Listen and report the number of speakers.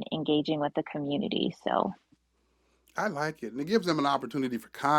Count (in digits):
2